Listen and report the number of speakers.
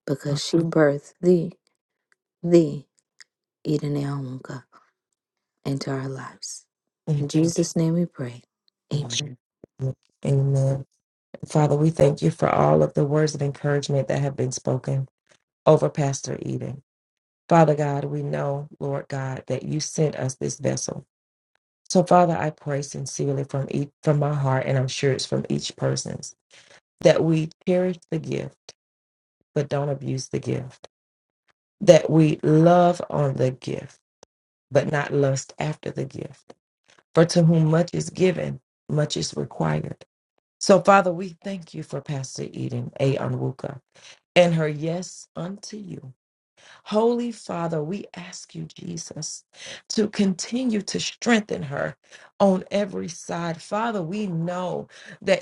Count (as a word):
two